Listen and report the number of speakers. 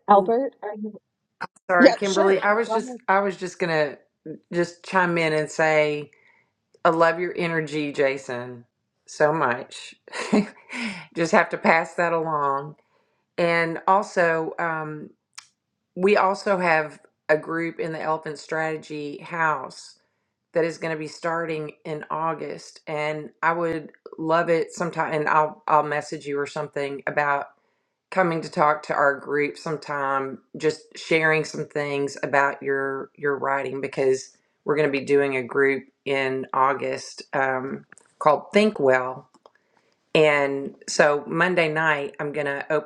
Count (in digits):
2